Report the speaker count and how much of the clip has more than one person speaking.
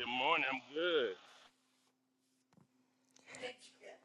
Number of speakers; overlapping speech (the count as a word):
one, no overlap